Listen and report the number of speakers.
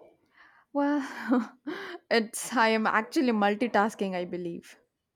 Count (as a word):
one